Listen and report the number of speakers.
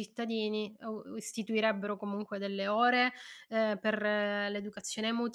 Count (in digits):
1